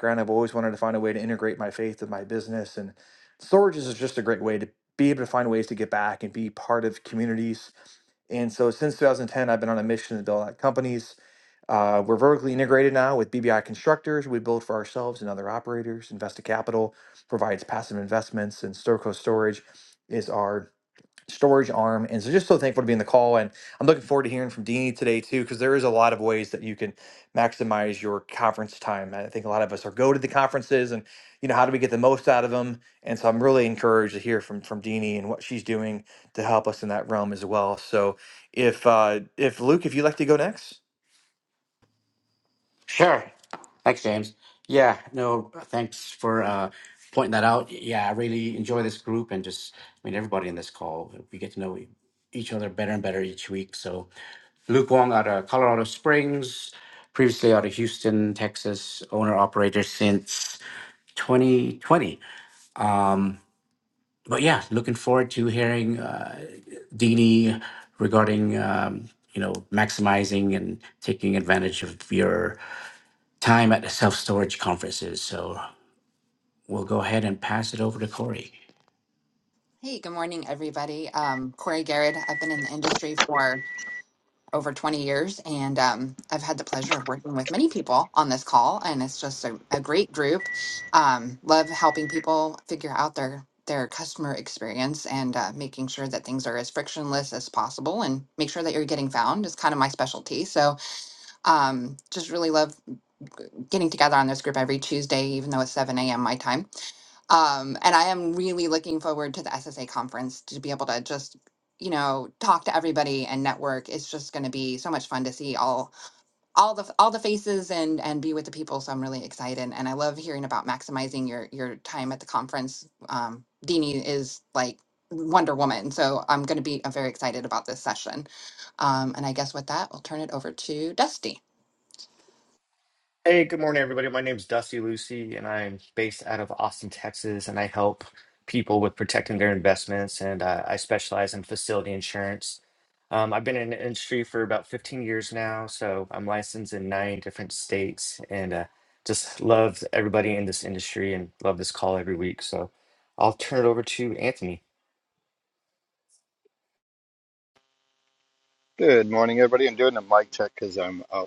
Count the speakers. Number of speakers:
5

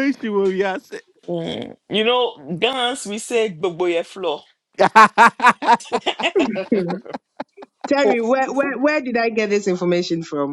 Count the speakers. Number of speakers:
3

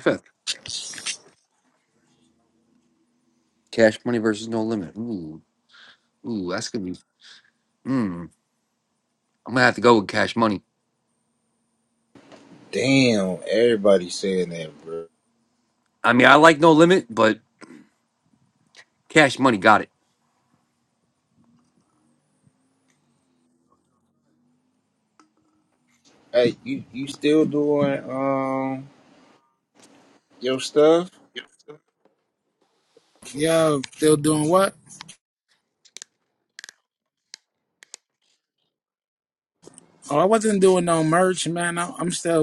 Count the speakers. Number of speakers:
3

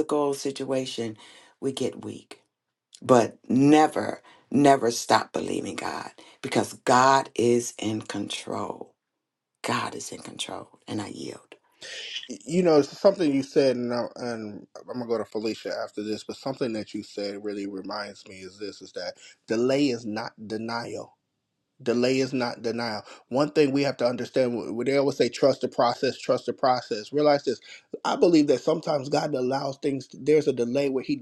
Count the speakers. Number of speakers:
2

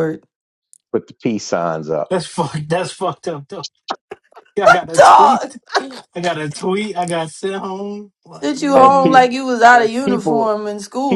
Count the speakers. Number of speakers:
3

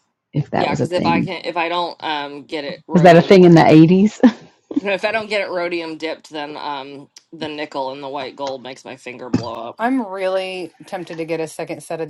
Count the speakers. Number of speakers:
3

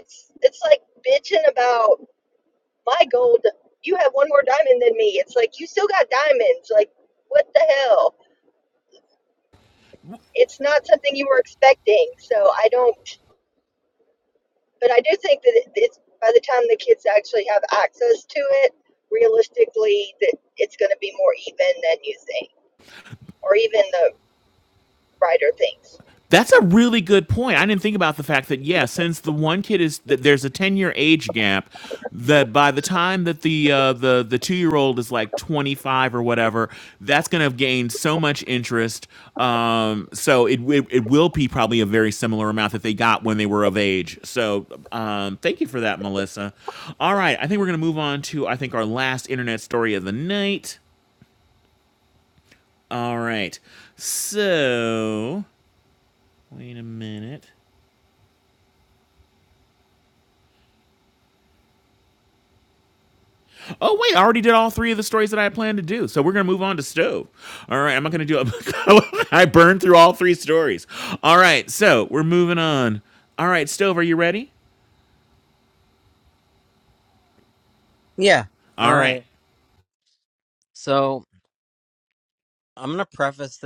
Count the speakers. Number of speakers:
3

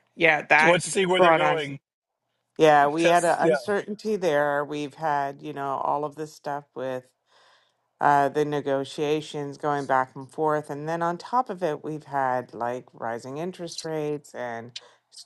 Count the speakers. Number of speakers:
2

